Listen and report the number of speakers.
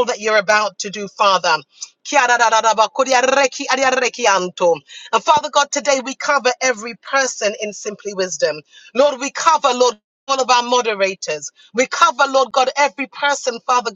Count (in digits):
1